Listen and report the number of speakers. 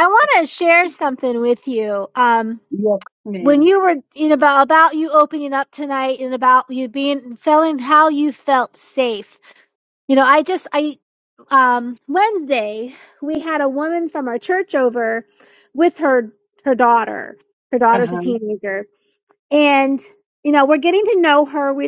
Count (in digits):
2